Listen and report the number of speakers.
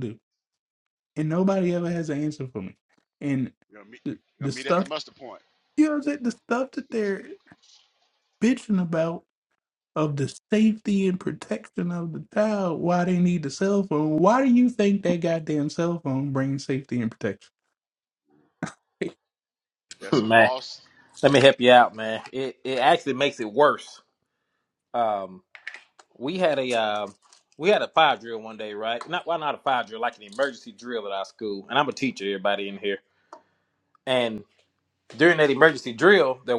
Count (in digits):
3